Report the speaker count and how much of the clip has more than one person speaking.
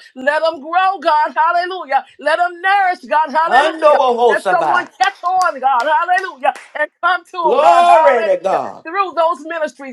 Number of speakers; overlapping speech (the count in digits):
2, about 19%